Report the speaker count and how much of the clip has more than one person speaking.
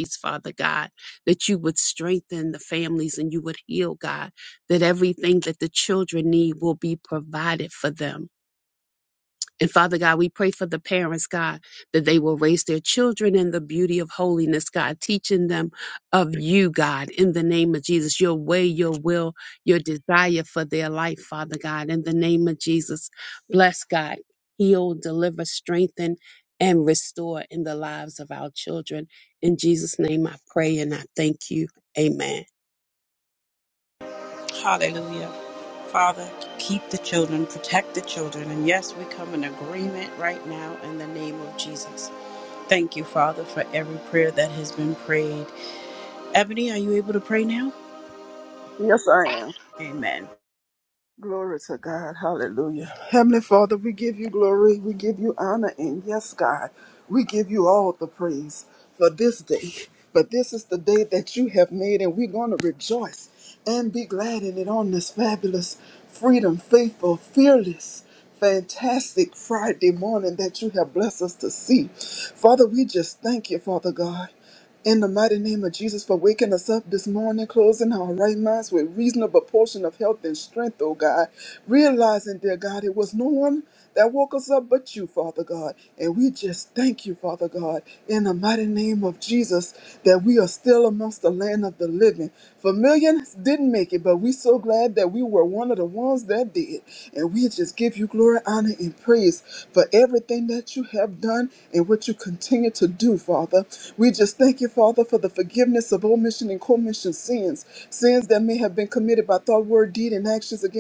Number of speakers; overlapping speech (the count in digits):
3, no overlap